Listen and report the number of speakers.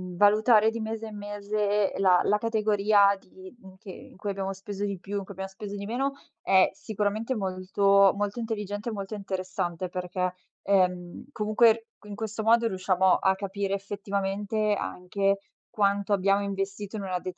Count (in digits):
1